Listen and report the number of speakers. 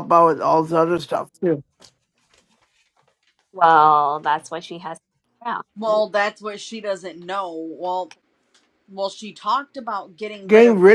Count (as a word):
three